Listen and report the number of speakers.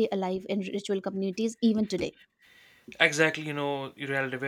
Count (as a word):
two